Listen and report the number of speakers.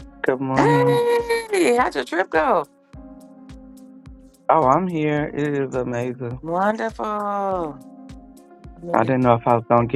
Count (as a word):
two